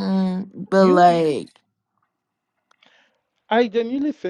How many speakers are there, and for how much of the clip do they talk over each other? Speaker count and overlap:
2, about 12%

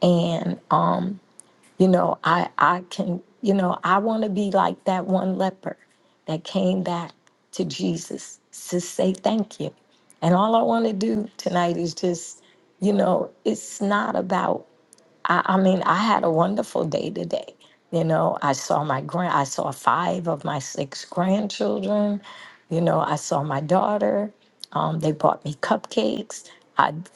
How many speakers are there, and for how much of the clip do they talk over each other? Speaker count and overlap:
1, no overlap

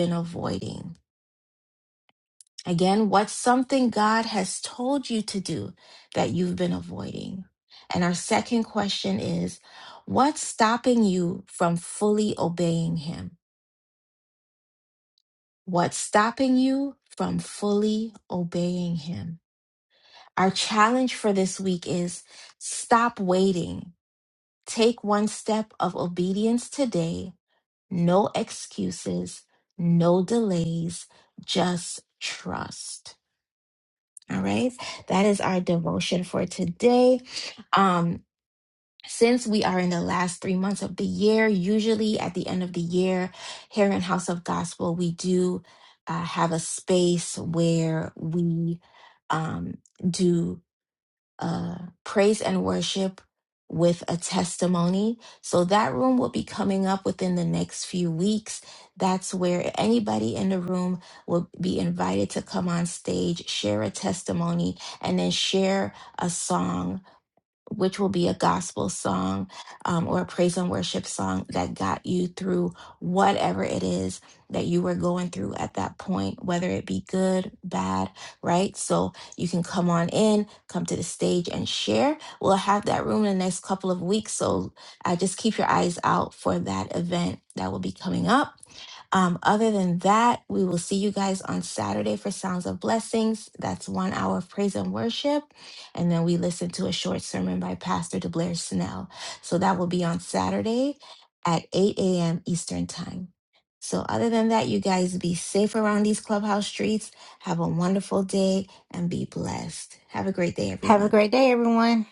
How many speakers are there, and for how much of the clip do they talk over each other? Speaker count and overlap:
2, under 1%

